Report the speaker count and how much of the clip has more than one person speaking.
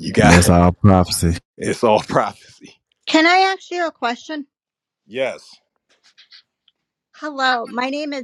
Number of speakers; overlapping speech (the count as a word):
three, about 3%